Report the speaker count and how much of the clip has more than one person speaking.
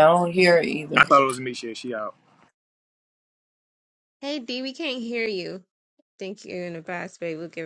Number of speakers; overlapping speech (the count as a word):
three, about 3%